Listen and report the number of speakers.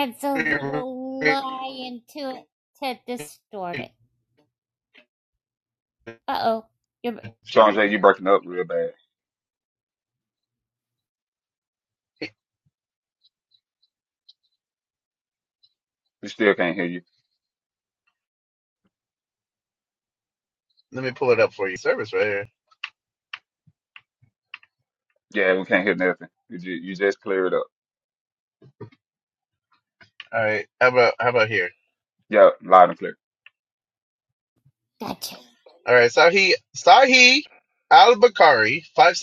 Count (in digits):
3